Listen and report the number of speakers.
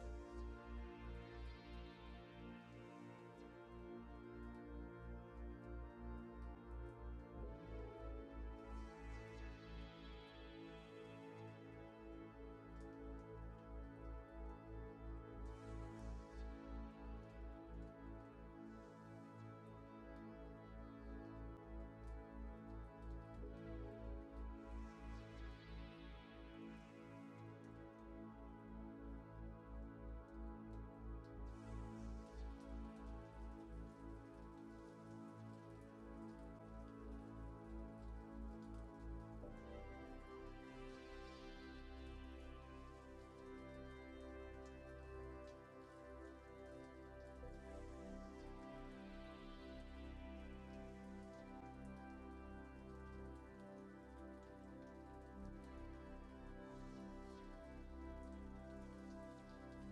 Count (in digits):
0